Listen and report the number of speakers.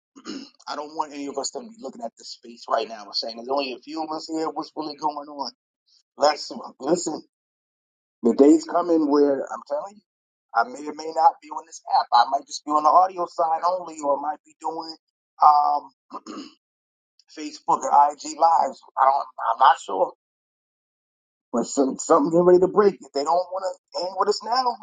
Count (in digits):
1